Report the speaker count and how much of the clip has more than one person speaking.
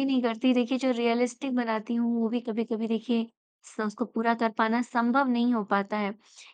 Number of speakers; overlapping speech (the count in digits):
1, no overlap